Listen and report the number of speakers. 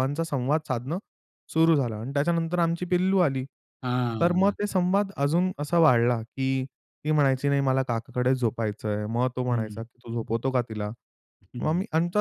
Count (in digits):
2